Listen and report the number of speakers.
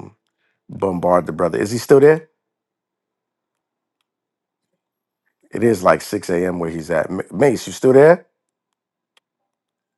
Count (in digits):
1